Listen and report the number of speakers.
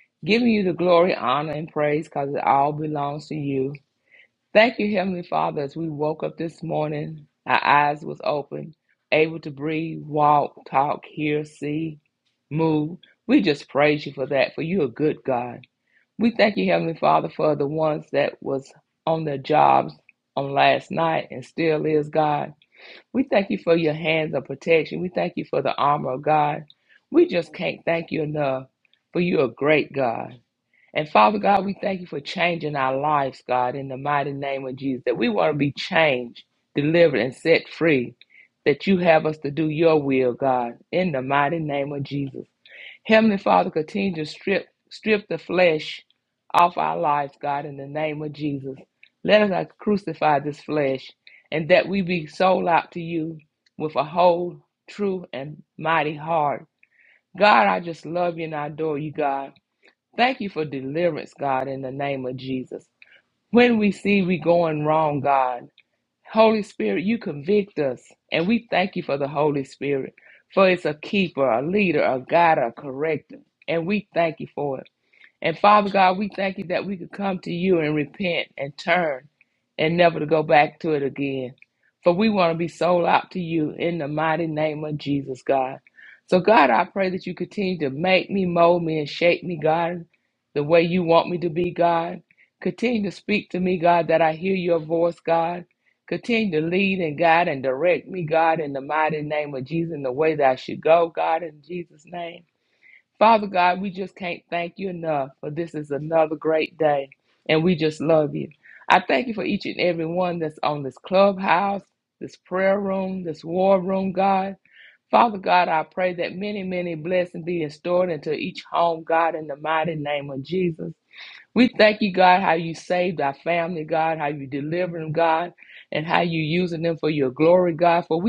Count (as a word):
one